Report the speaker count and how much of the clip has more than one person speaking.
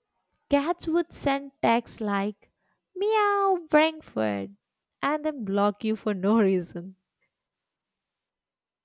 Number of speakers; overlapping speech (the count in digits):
1, no overlap